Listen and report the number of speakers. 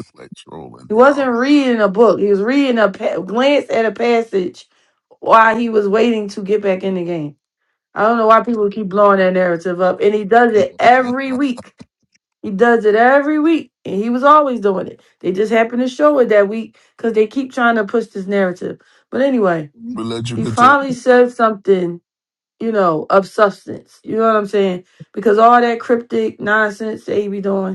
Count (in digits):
2